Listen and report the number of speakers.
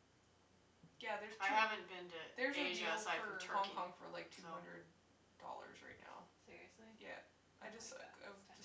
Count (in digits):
3